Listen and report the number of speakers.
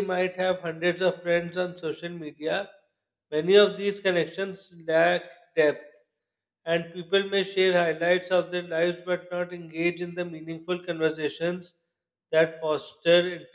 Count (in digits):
1